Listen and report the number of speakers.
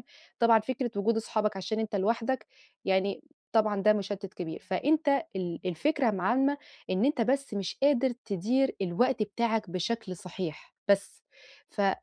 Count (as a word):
one